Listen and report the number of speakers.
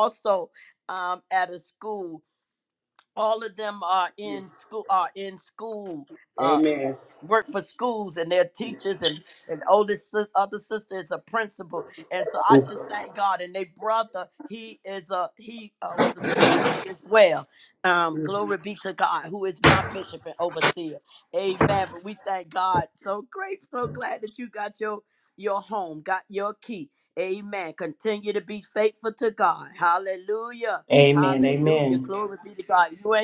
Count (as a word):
two